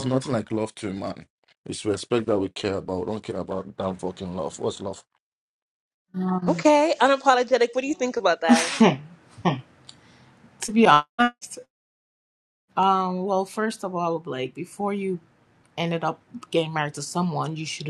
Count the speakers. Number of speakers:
3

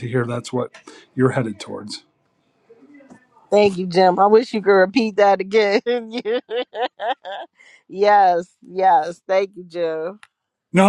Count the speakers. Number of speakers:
2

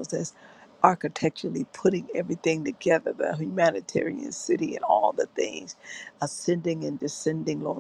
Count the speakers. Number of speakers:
1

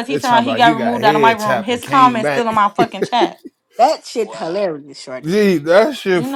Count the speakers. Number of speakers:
3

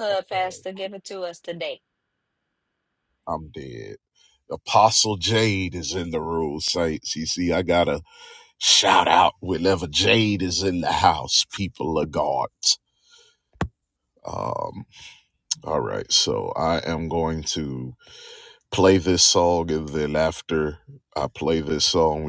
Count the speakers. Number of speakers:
2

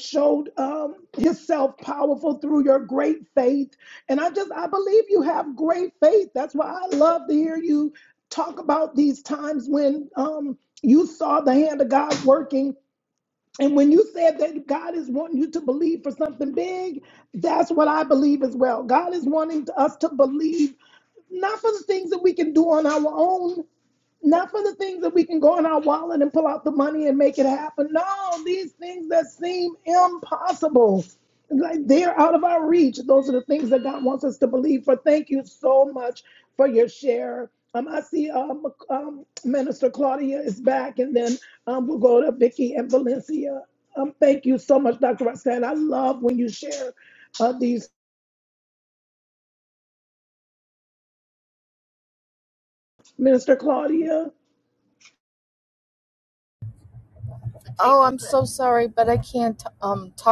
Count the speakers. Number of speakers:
2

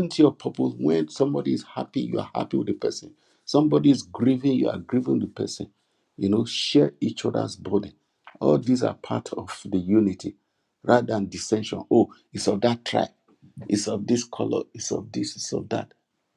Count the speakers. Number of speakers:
1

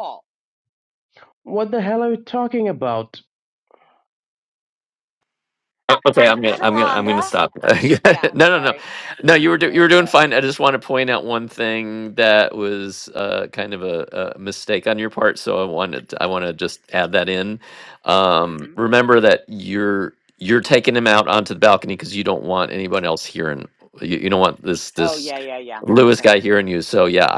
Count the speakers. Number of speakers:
3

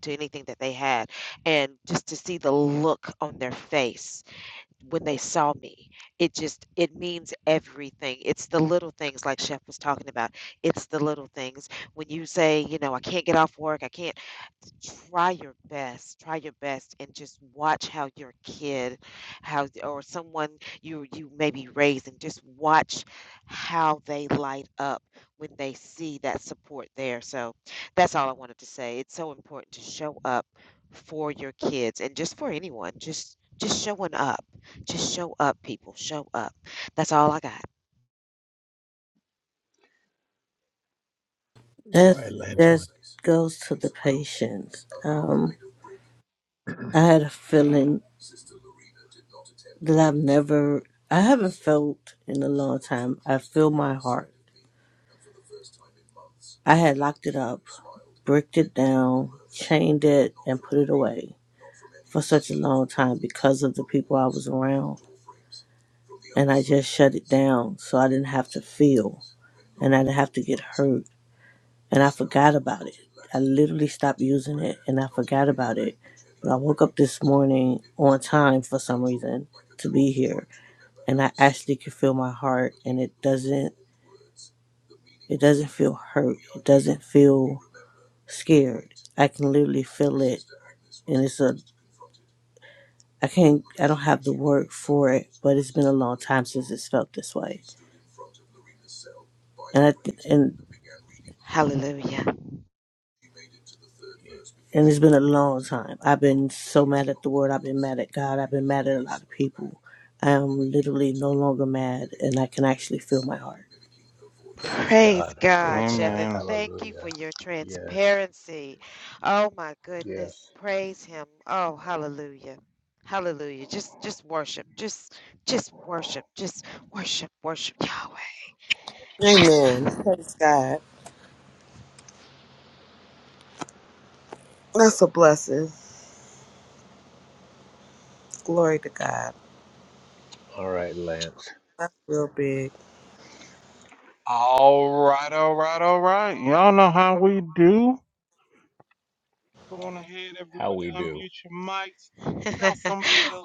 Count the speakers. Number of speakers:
5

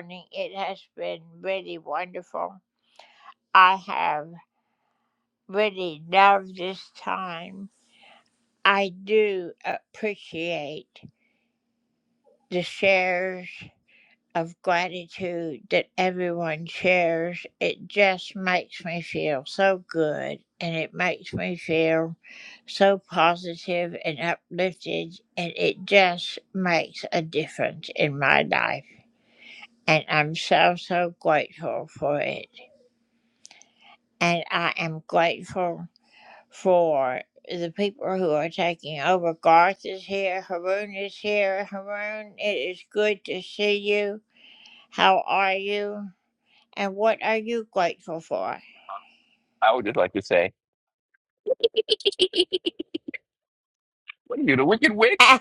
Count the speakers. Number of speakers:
2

